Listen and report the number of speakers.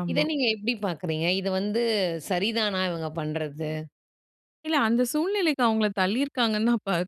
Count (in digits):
2